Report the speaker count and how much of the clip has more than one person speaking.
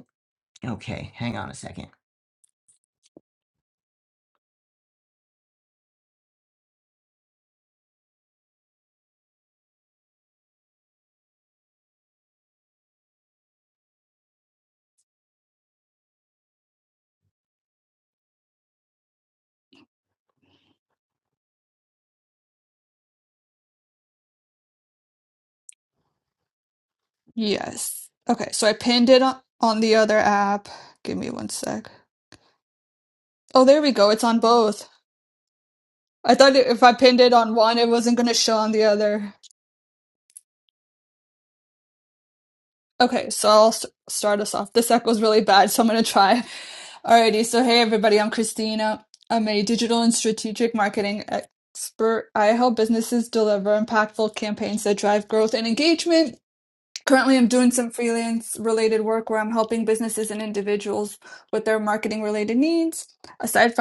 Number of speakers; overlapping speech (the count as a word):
two, no overlap